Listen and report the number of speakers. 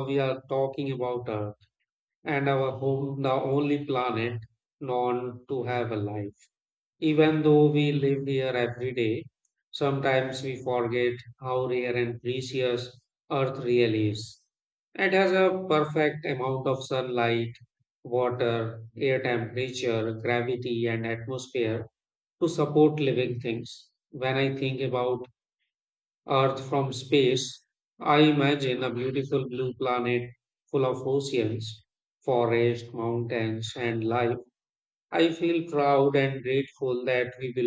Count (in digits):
1